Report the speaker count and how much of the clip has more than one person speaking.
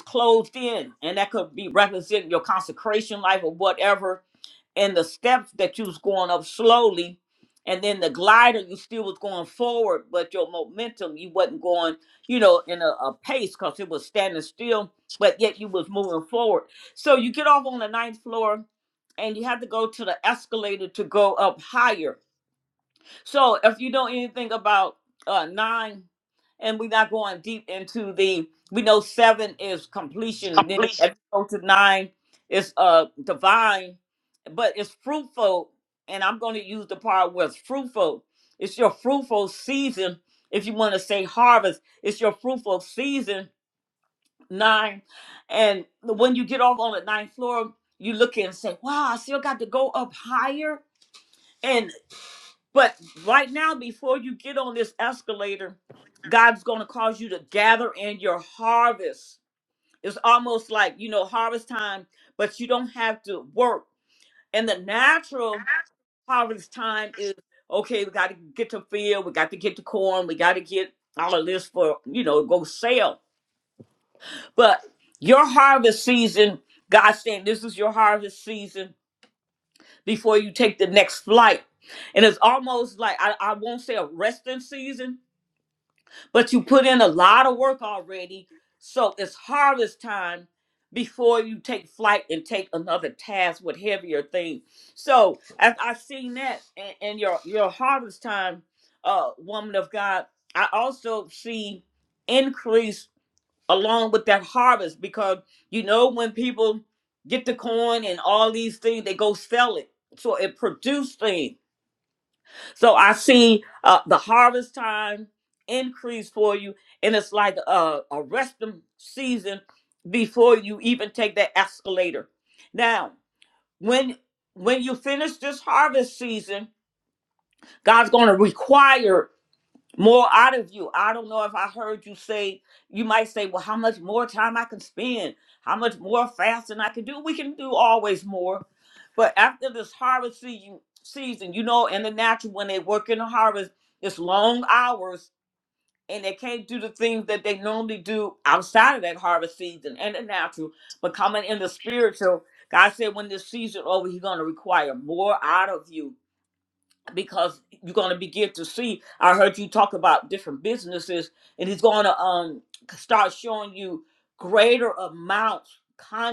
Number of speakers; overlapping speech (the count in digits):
1, no overlap